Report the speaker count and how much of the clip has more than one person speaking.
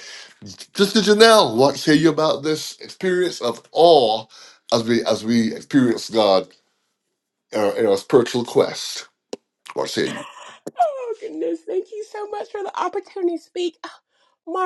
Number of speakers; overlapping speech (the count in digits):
2, no overlap